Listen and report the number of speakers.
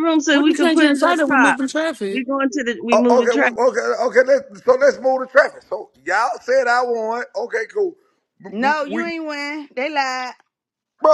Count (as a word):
four